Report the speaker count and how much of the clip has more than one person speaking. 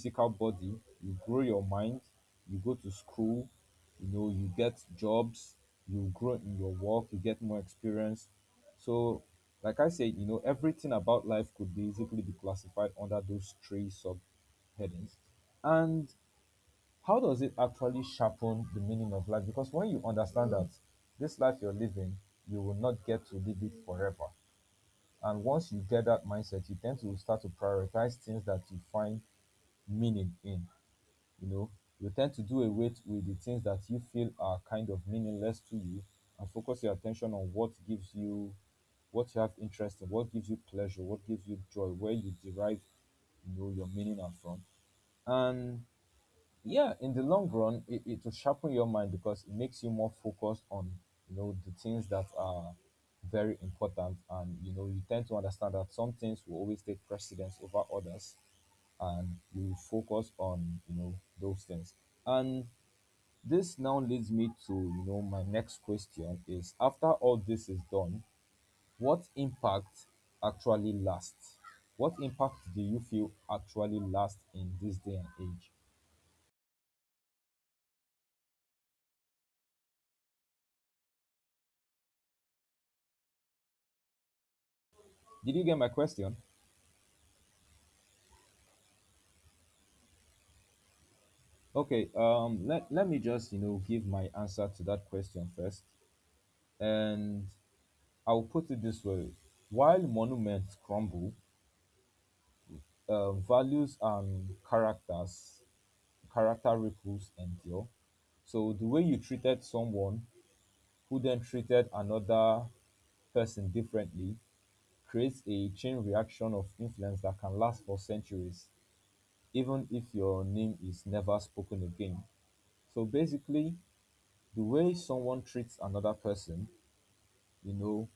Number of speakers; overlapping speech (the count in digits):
1, no overlap